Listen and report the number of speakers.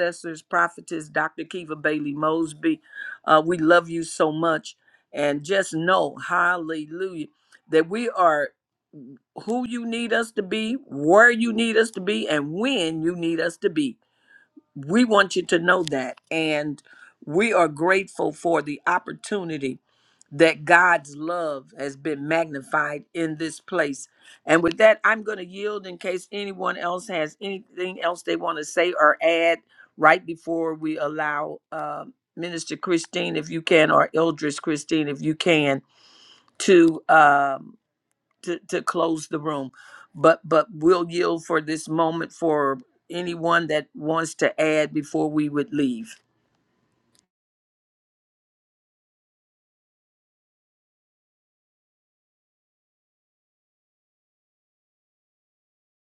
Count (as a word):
one